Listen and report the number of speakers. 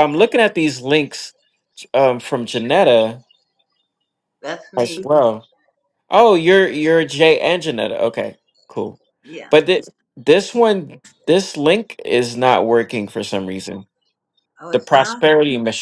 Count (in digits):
2